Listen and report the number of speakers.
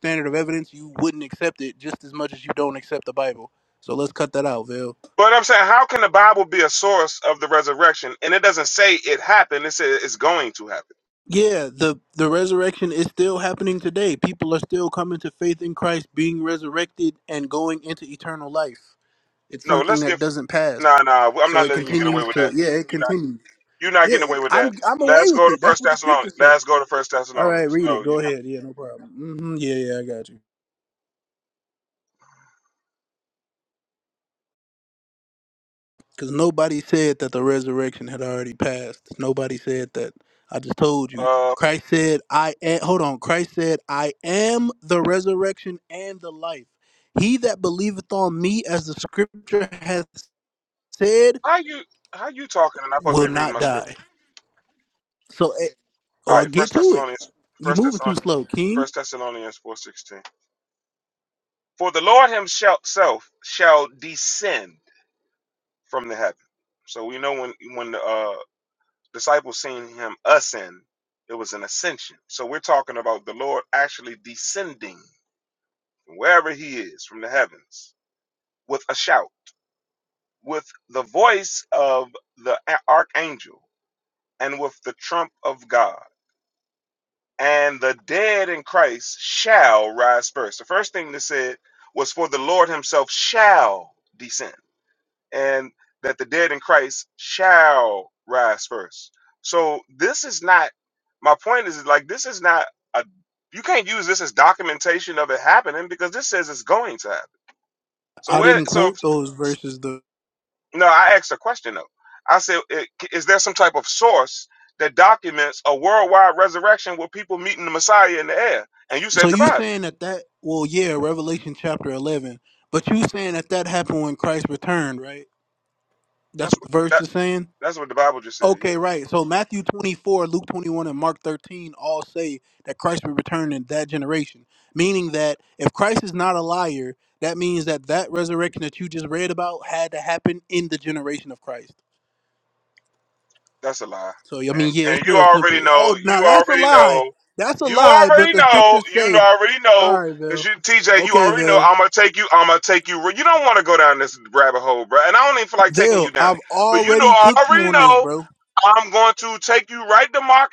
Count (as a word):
two